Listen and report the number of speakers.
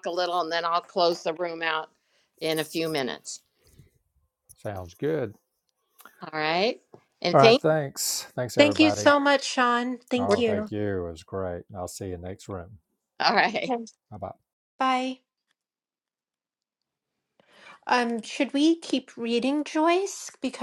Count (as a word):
three